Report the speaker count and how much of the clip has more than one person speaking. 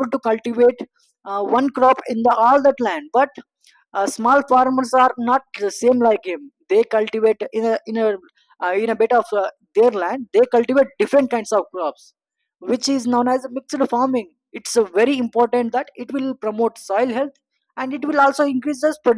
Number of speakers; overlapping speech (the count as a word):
one, no overlap